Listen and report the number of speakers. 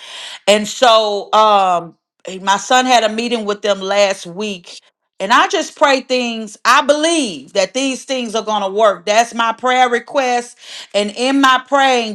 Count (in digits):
1